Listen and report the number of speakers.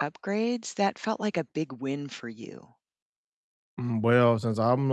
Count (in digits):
2